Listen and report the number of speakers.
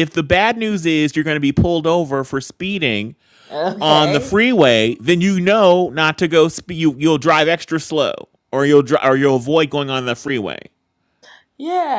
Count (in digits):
2